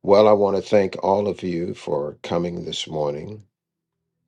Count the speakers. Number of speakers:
one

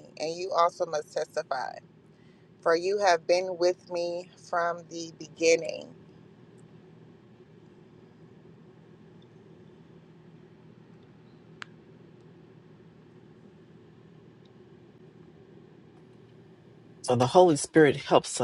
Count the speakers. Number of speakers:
two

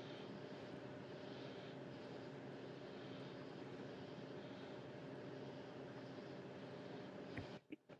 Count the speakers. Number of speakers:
zero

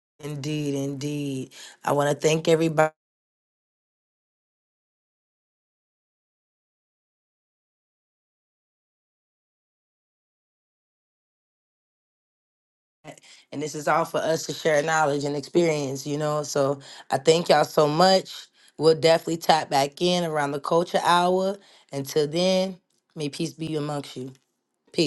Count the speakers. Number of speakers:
one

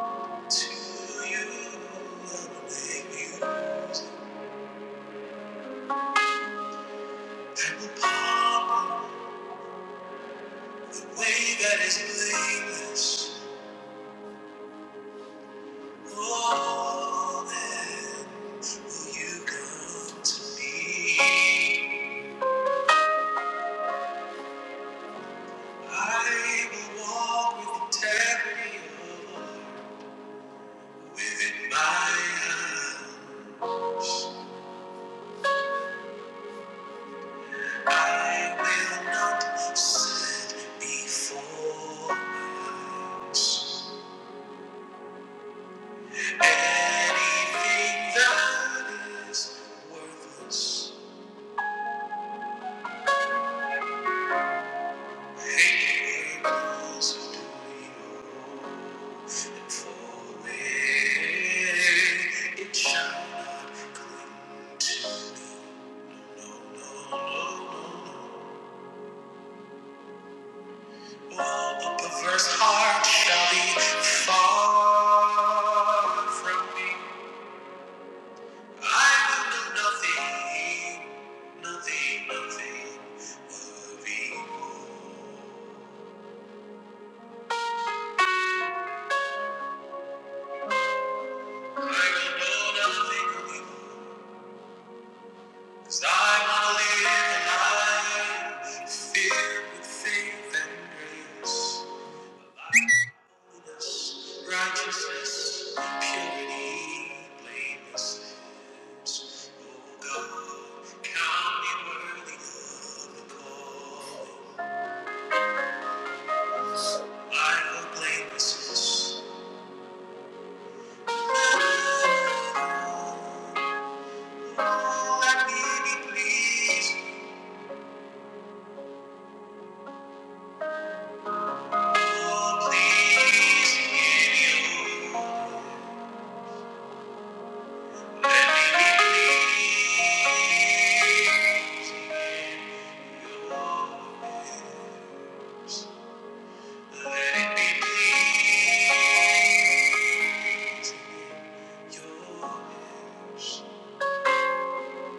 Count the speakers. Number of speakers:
one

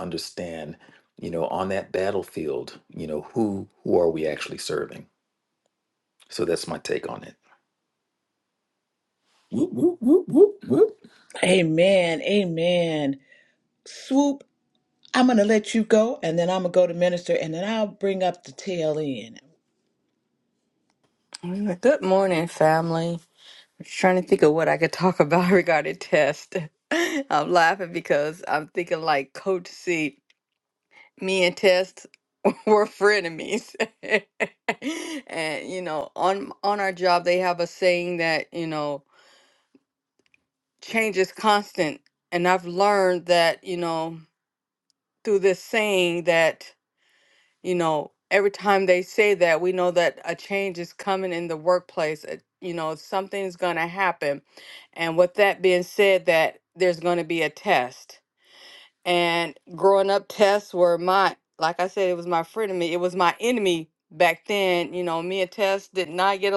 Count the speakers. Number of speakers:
four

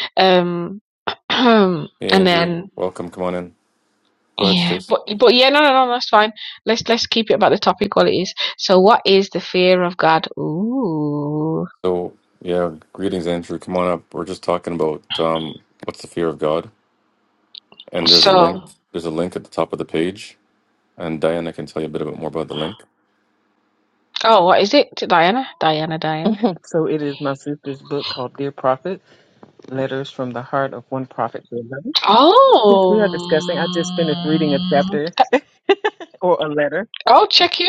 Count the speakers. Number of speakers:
three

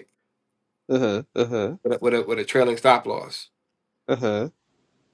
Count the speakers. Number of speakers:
two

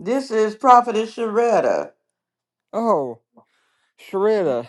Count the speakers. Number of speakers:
two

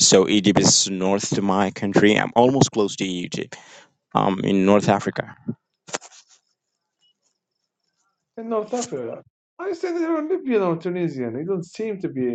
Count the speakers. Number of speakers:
two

